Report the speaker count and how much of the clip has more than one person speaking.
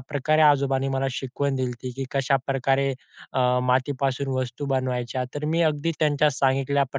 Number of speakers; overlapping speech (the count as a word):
one, no overlap